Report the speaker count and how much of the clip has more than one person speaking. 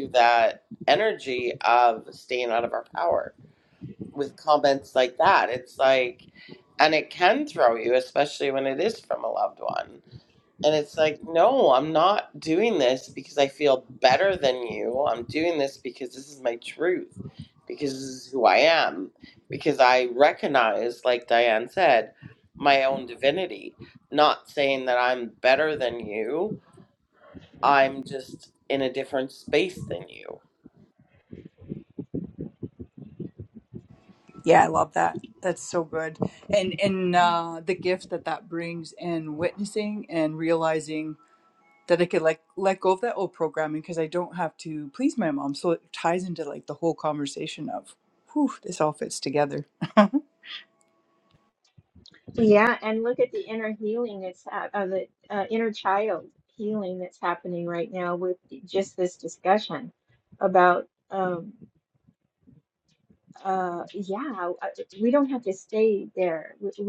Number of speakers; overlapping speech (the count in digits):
3, no overlap